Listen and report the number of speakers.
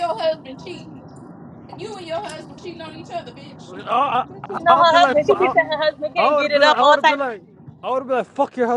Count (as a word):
three